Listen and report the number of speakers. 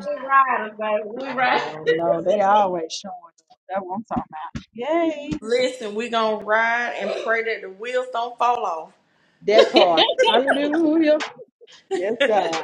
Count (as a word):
three